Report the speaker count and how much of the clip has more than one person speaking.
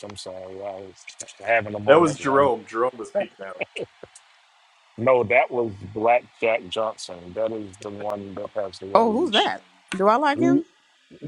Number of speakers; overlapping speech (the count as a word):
three, about 7%